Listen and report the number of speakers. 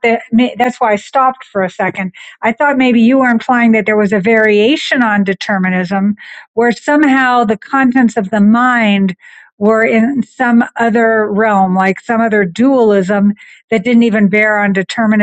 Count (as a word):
one